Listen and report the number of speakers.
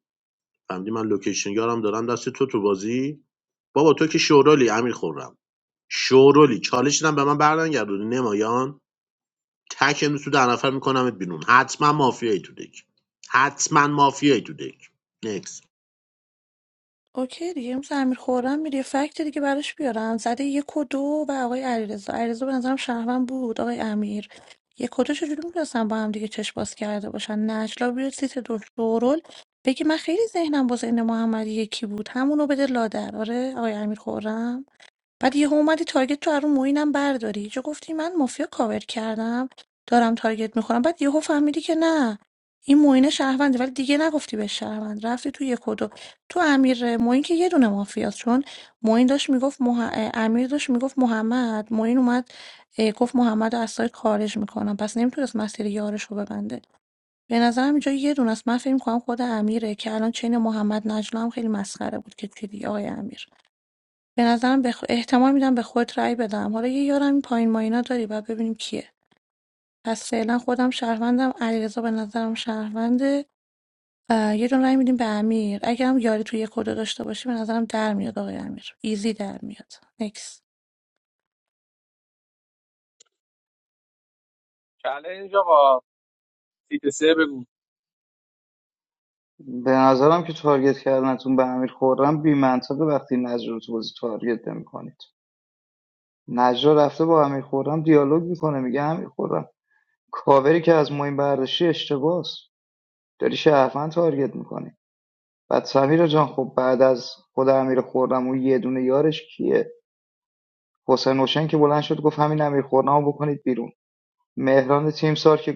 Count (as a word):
four